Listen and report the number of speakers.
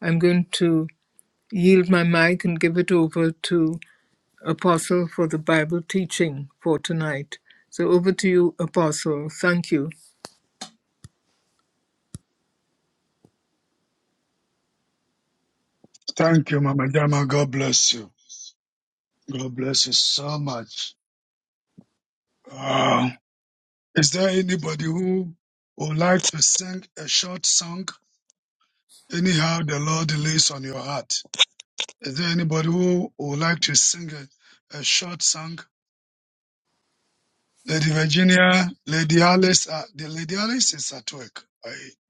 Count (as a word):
two